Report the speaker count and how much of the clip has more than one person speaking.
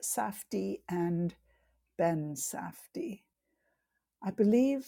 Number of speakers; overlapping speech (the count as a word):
one, no overlap